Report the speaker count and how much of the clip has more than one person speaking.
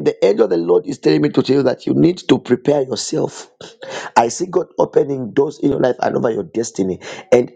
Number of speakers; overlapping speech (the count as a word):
one, no overlap